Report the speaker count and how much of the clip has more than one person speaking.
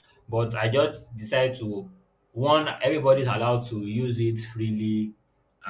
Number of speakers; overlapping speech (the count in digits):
1, no overlap